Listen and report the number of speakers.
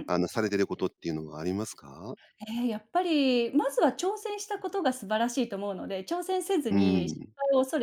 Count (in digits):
2